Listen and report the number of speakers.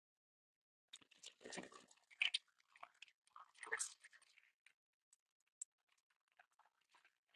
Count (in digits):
0